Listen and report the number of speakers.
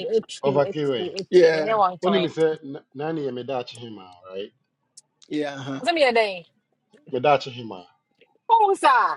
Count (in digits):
3